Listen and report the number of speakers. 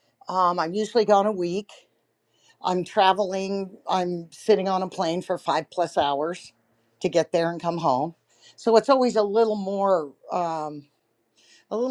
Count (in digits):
1